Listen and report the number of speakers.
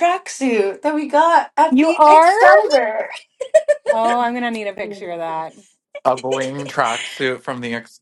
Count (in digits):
3